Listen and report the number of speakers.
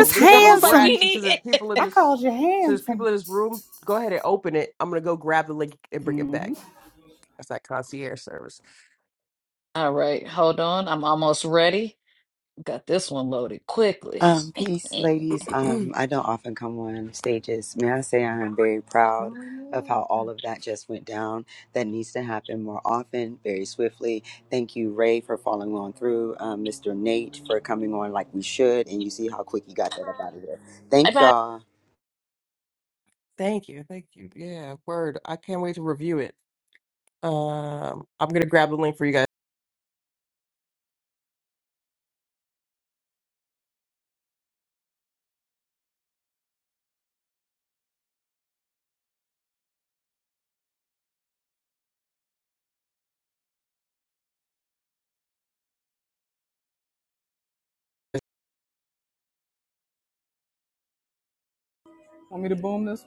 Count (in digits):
4